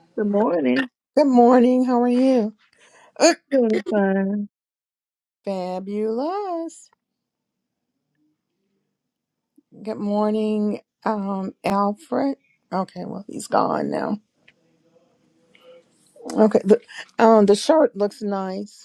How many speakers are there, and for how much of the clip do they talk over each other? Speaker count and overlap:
two, no overlap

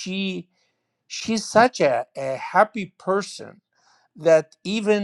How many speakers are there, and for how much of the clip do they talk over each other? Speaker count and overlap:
one, no overlap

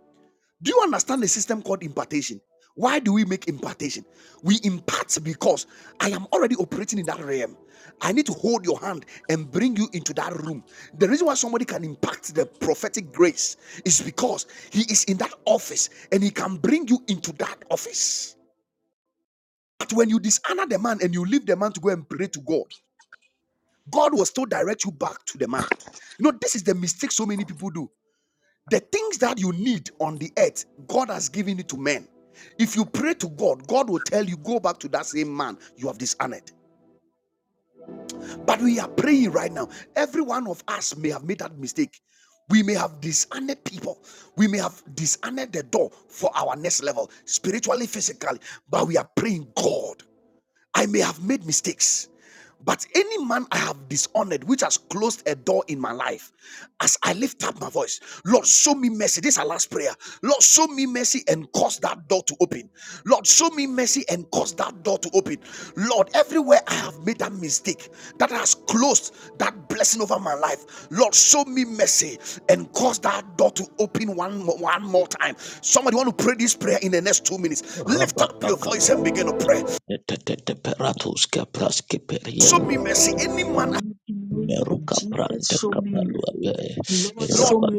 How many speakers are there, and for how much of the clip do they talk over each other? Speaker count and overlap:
three, about 5%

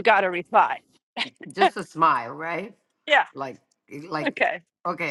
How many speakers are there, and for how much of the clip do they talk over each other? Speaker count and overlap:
two, about 1%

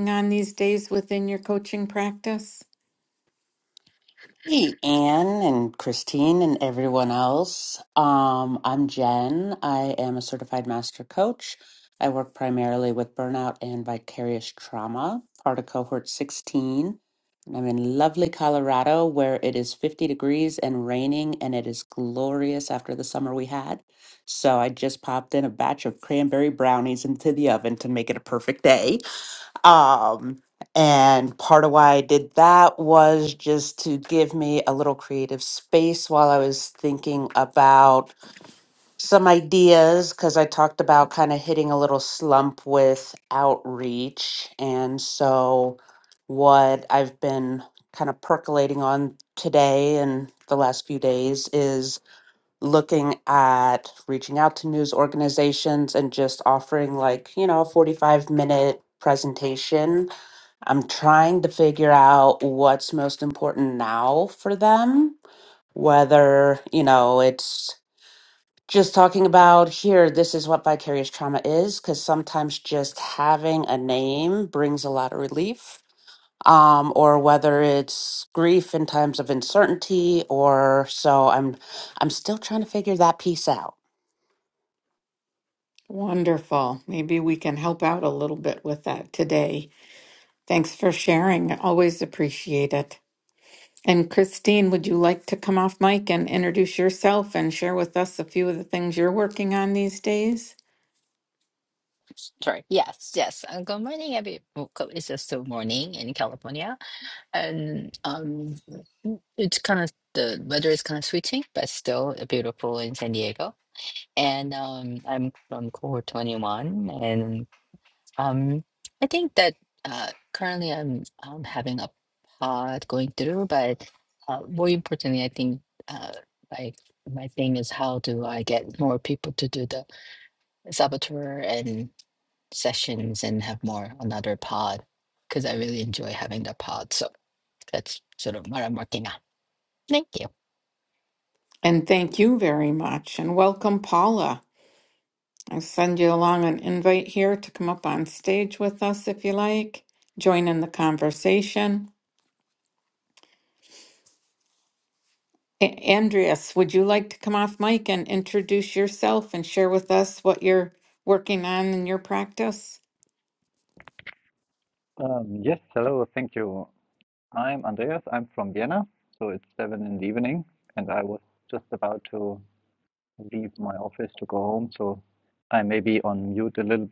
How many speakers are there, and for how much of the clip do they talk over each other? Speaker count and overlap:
four, no overlap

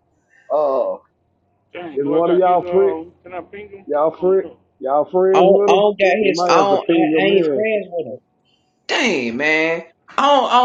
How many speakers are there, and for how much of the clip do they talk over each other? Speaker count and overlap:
three, about 31%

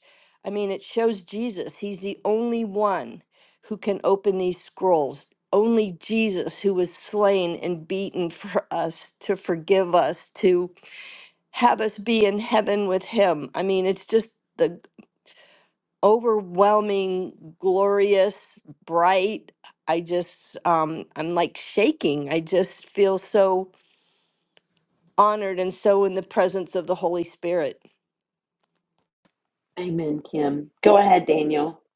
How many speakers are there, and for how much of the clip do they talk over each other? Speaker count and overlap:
two, no overlap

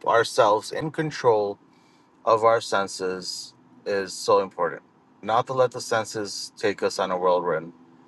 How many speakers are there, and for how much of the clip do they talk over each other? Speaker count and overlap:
one, no overlap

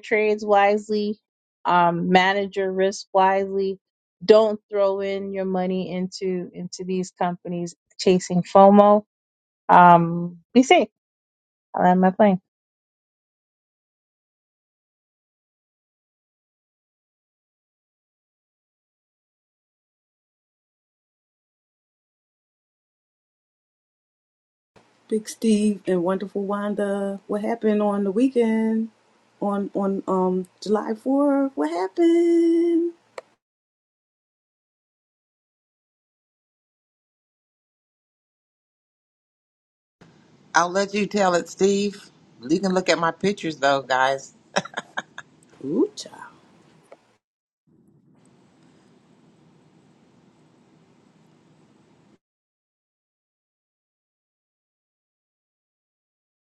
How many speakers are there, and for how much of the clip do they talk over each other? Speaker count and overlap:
three, no overlap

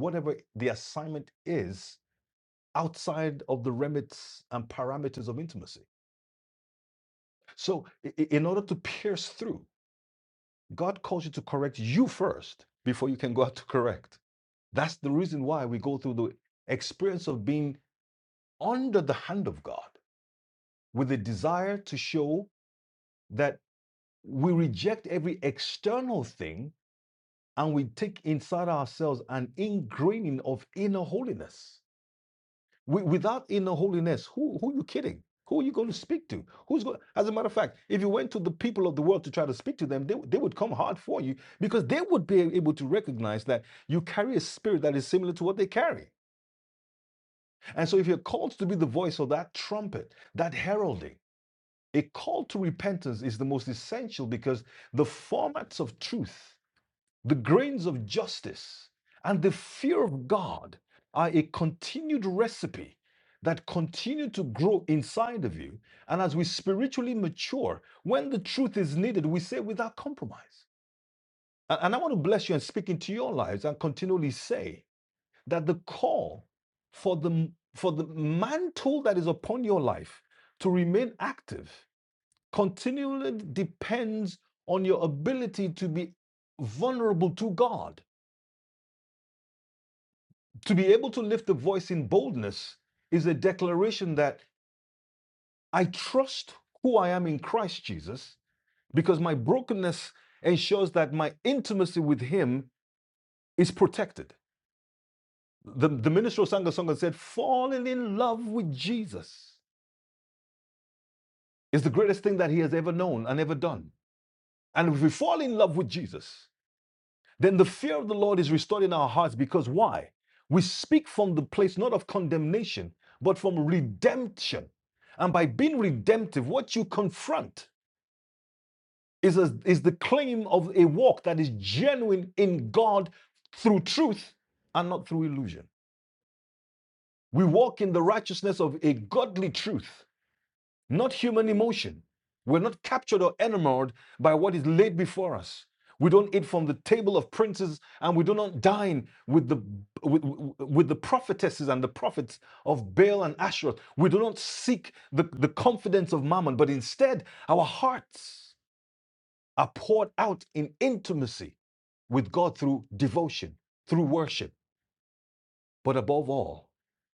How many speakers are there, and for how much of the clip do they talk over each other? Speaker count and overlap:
one, no overlap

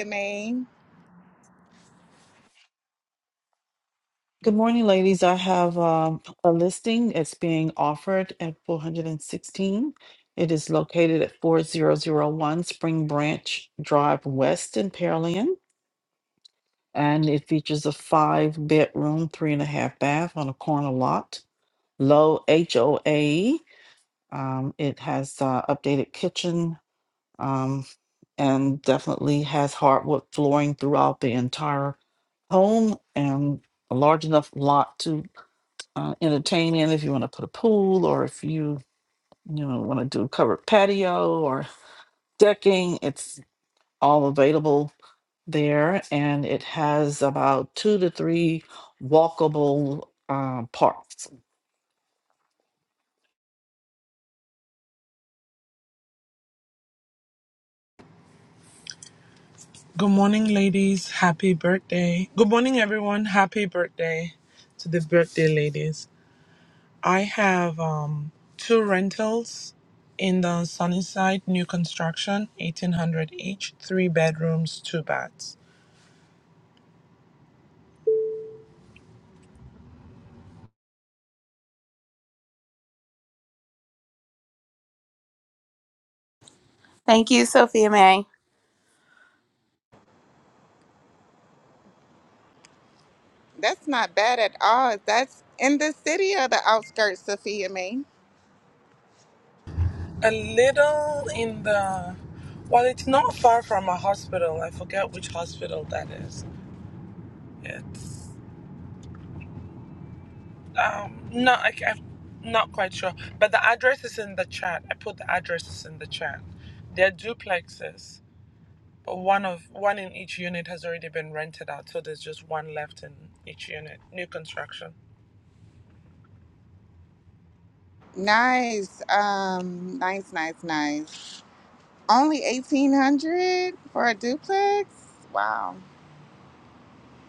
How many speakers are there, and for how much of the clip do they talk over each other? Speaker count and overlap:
four, no overlap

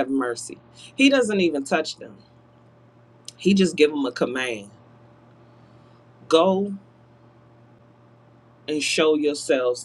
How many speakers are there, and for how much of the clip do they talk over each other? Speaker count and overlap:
one, no overlap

